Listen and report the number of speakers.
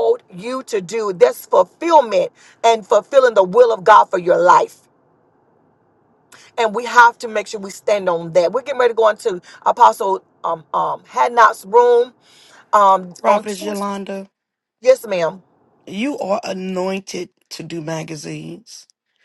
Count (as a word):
two